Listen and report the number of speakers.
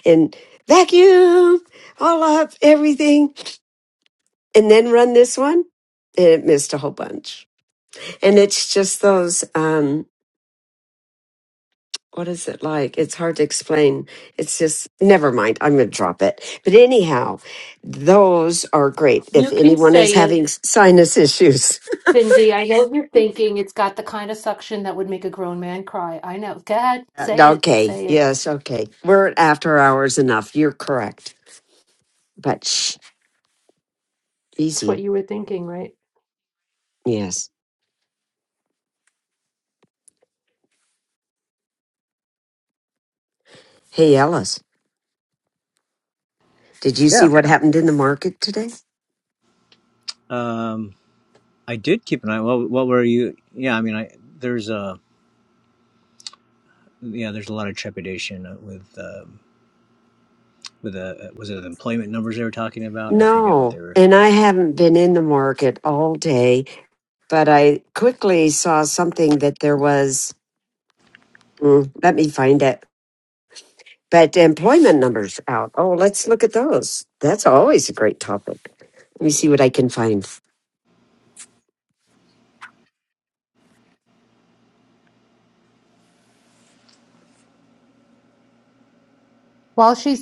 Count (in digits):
3